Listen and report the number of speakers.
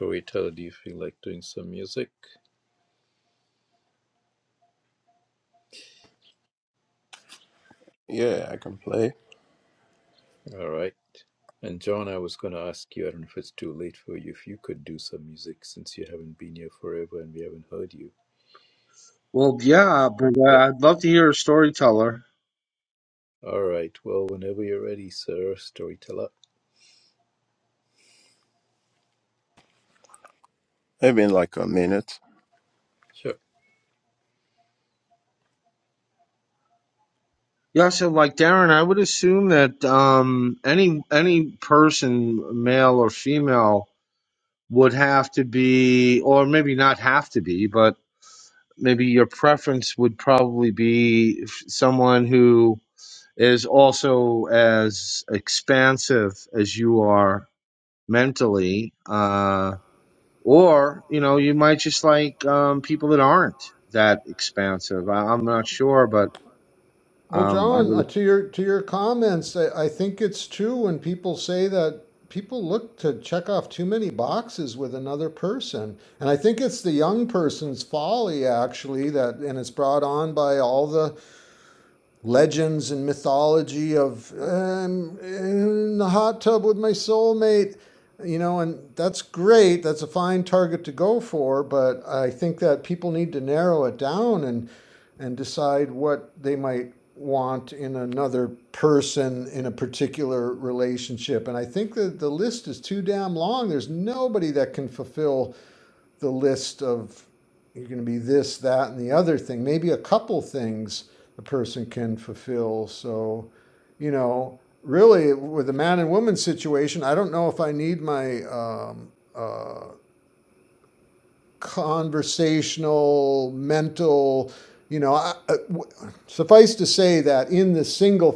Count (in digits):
4